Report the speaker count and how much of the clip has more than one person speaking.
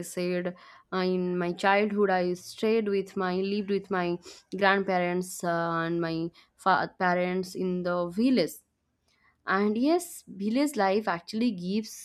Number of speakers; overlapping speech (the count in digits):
1, no overlap